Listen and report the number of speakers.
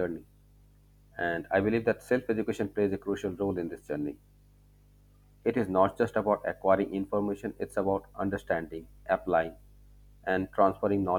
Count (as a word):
one